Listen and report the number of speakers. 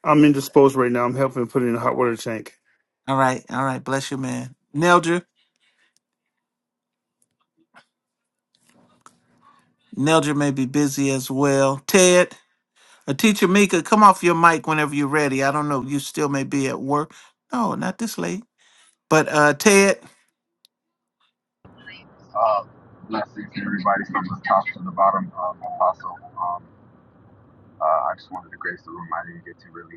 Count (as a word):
three